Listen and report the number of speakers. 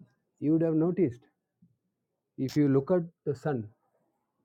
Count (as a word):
one